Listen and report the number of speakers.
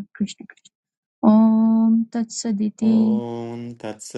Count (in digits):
2